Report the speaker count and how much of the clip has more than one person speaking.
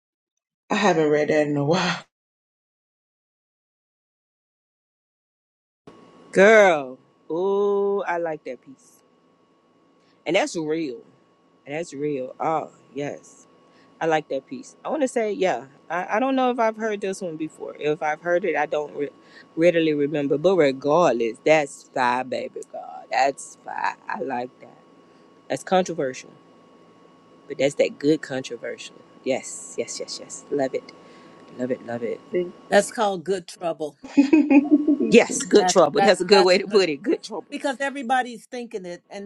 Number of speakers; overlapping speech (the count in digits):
3, about 4%